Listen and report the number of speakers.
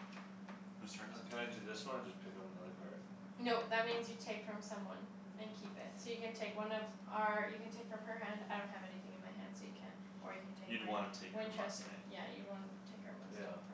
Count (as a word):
three